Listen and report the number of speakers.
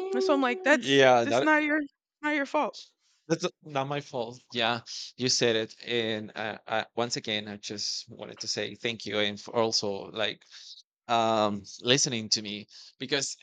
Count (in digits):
2